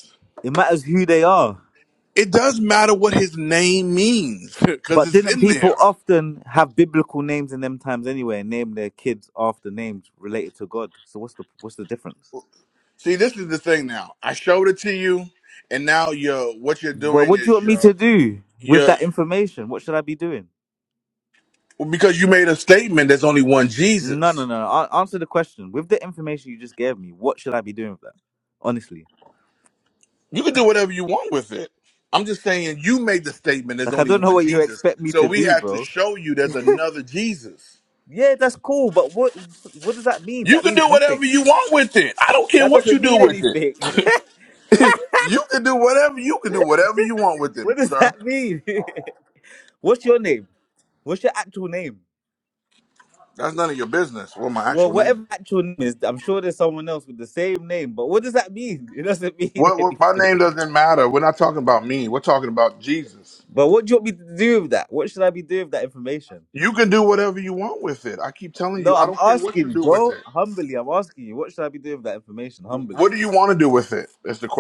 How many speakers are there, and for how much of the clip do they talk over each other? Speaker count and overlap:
2, about 12%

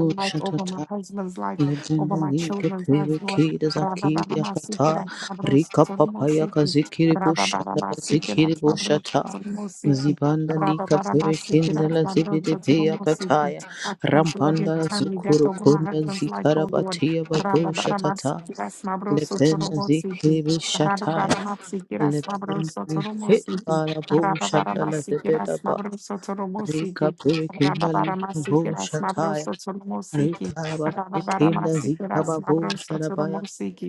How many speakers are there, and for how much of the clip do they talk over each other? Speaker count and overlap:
2, about 74%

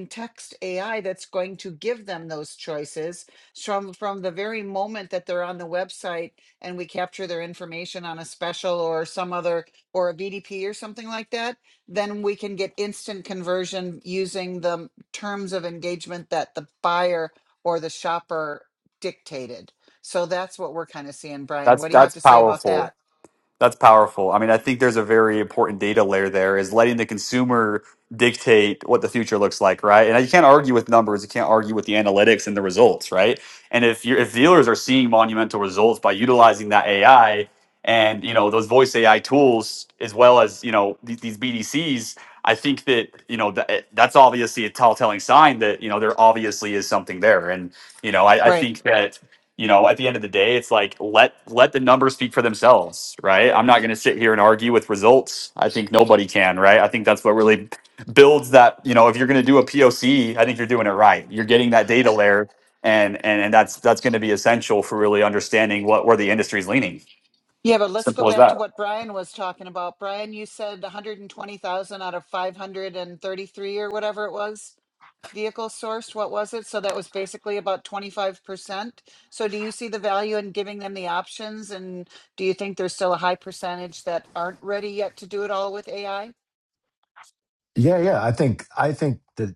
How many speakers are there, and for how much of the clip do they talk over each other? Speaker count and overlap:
3, about 2%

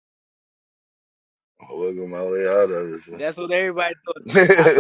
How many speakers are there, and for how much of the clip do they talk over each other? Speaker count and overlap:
2, about 7%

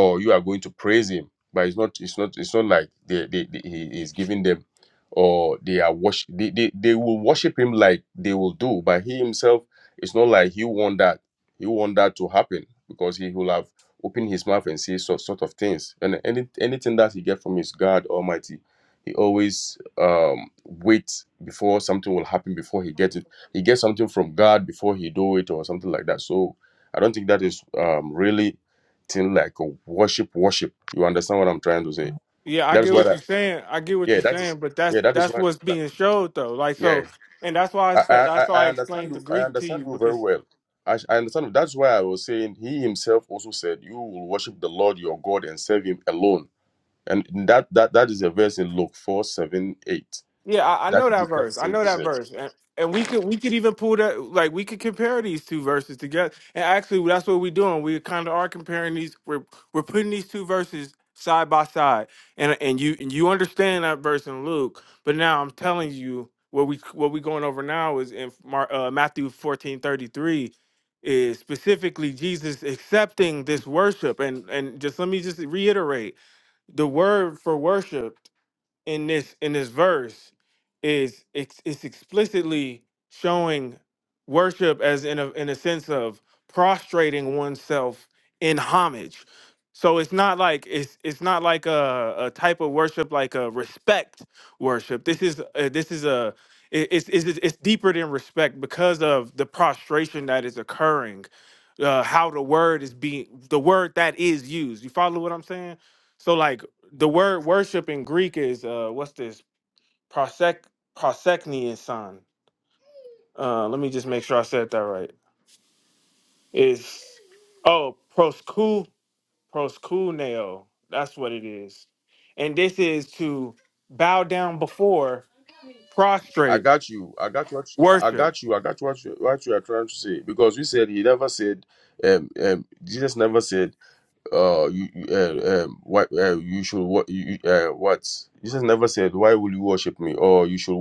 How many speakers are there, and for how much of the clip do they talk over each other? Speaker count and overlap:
2, about 4%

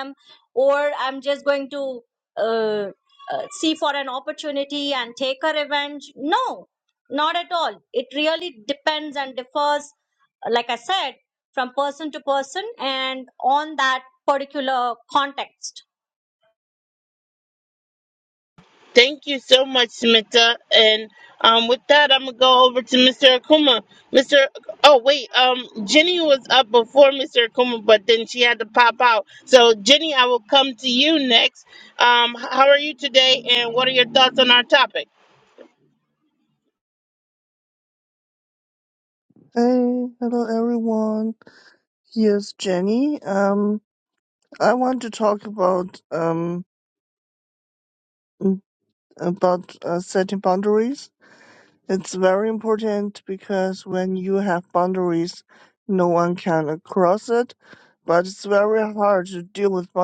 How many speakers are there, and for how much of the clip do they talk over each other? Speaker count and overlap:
3, no overlap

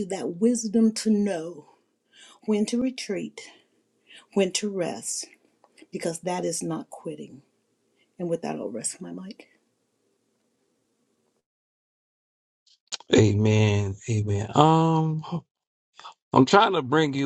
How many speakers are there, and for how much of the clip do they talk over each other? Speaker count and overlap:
2, no overlap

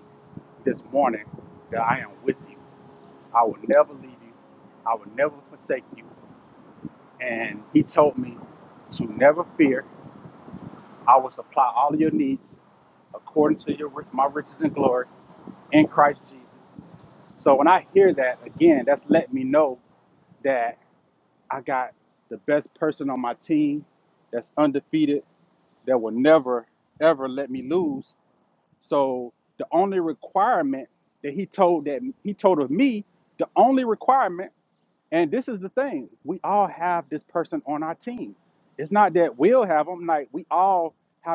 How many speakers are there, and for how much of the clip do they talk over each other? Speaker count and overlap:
1, no overlap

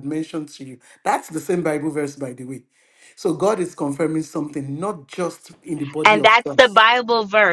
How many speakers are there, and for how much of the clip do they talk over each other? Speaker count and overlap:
2, about 8%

